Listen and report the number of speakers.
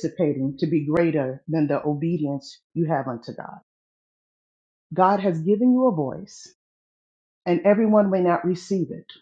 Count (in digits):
1